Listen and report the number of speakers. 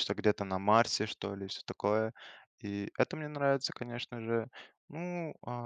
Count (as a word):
one